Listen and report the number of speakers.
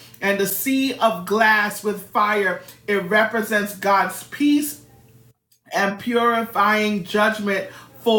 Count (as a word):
one